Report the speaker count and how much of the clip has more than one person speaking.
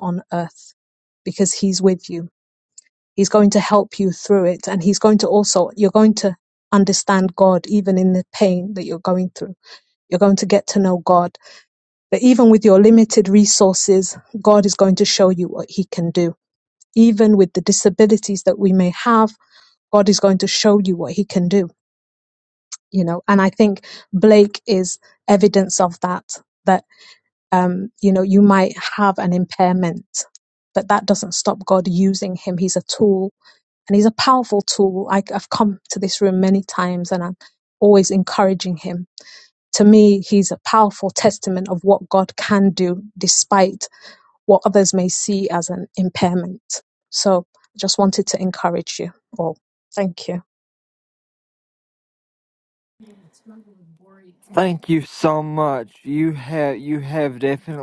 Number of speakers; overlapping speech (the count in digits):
2, no overlap